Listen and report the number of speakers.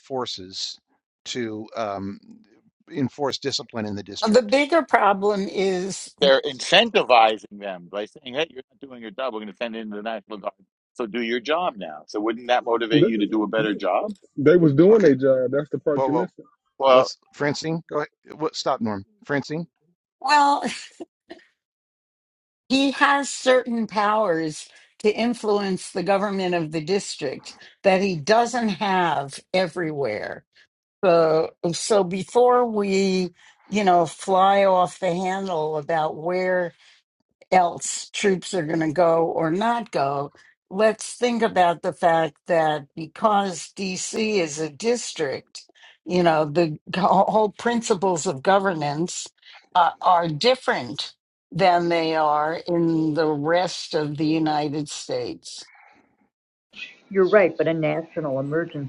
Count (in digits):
5